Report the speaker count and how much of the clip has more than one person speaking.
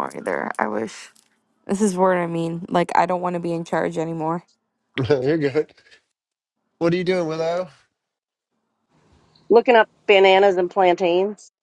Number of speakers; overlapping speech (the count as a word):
three, no overlap